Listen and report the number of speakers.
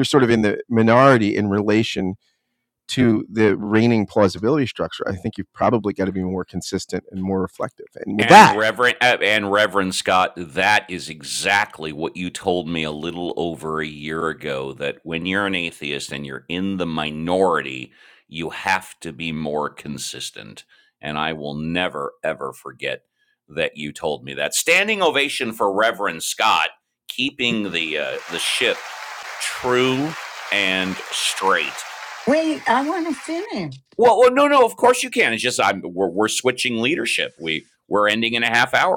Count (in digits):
3